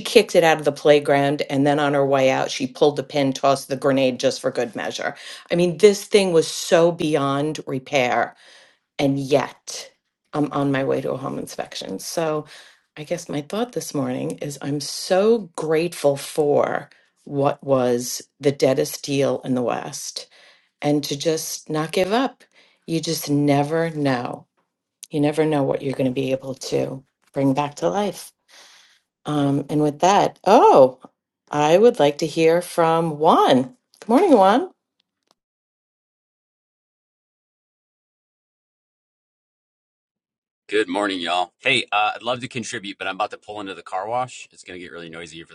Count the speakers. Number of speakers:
2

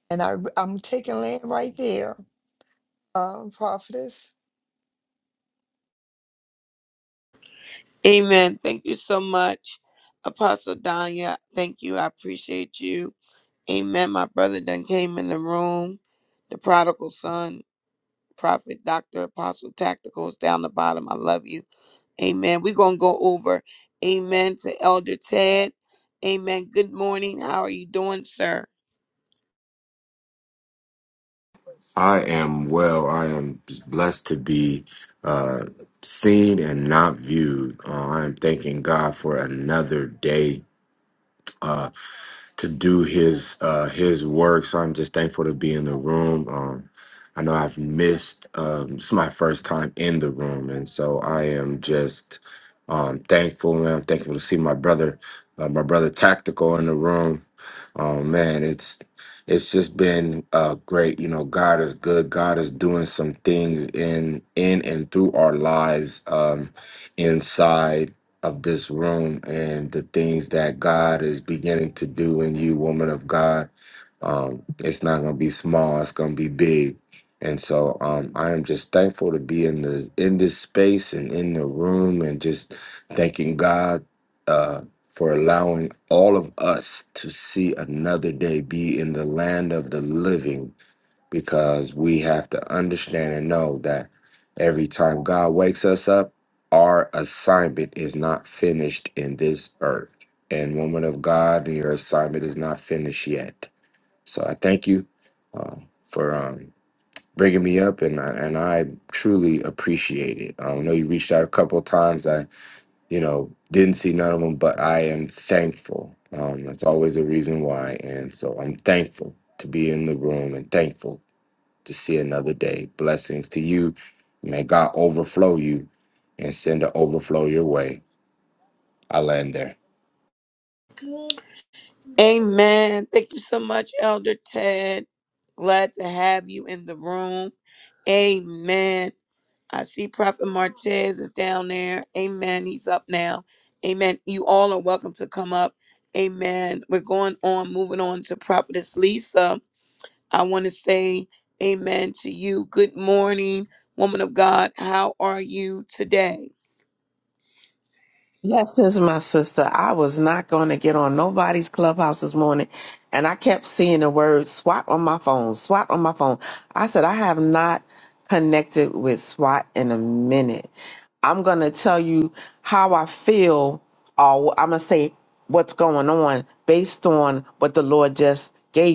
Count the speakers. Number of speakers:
4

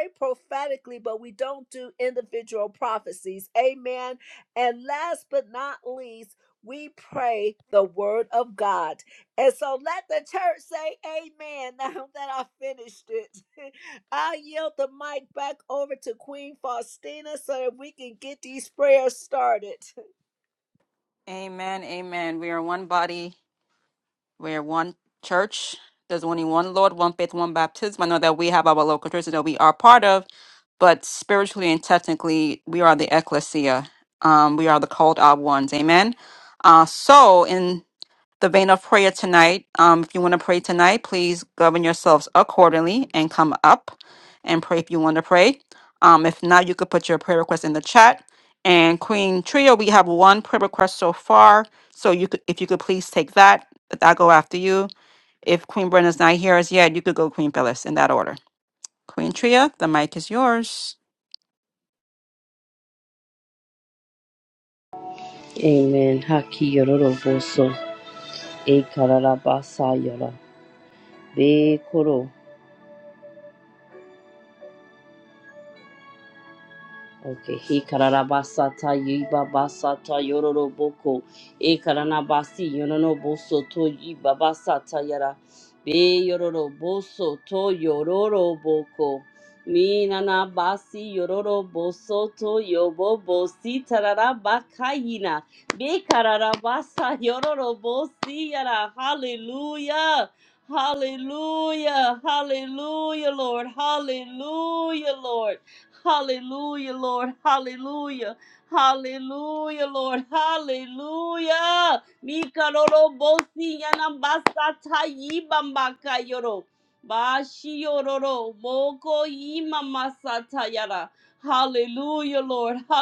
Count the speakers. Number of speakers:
3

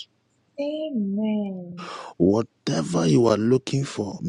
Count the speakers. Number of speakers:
2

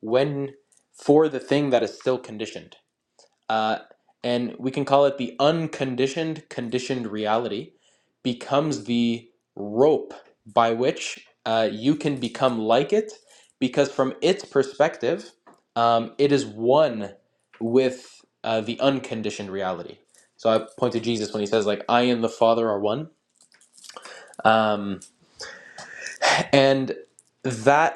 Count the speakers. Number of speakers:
1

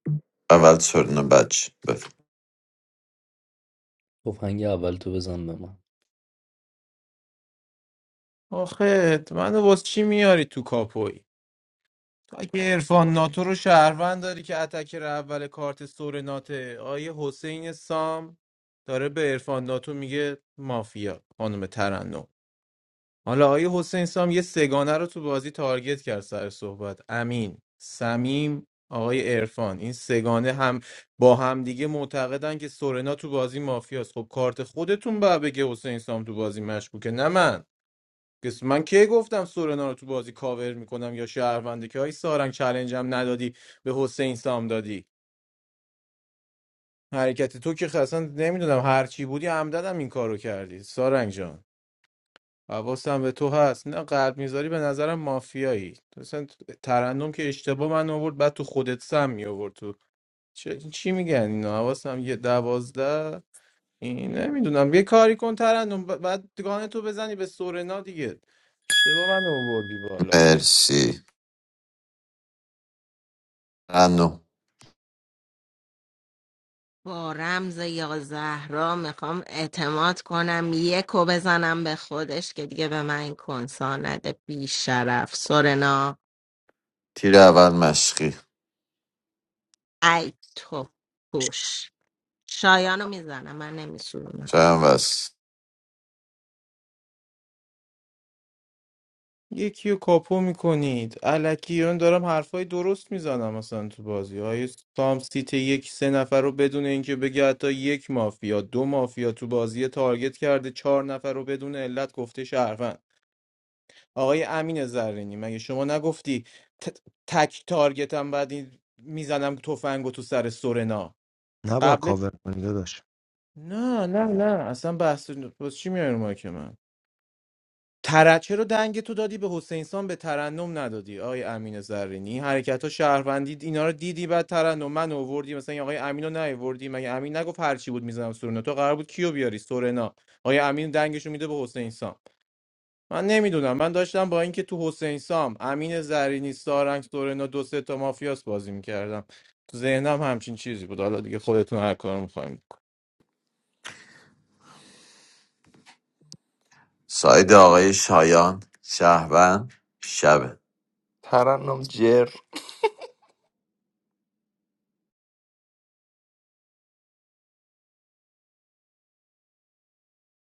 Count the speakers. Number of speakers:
6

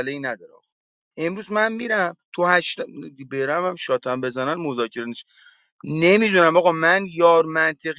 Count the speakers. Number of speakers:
1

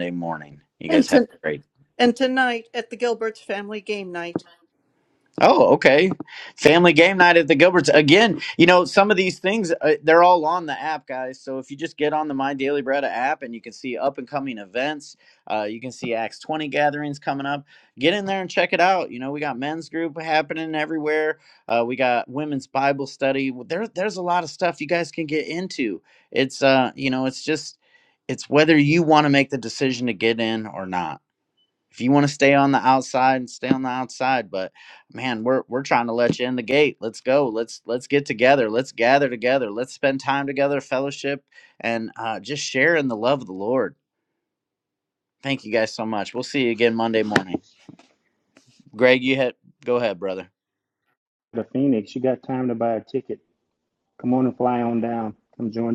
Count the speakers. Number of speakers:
3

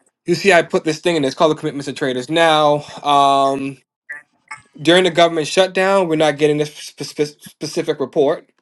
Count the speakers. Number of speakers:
1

